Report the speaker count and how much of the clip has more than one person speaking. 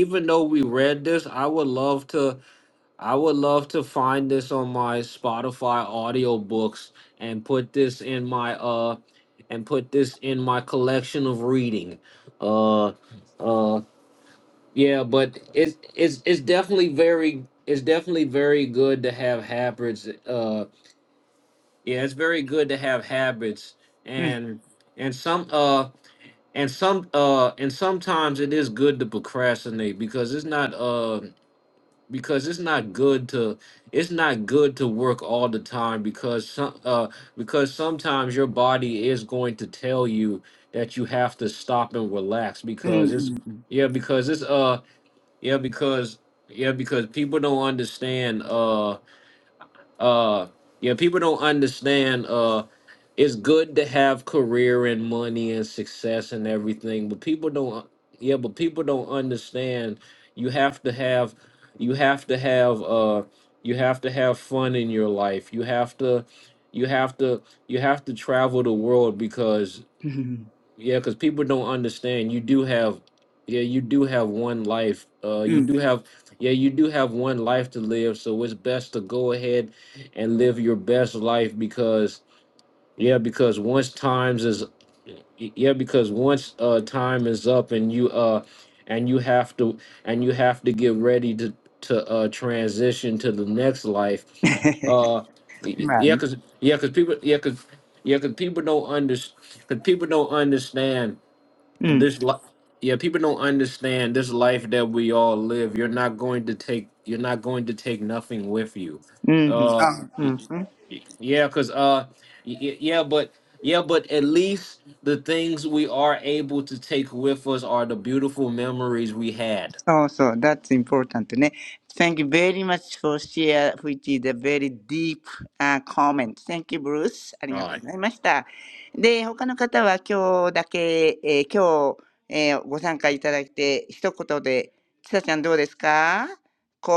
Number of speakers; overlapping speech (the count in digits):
2, about 2%